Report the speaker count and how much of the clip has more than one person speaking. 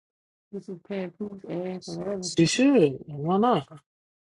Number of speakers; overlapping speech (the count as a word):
two, about 3%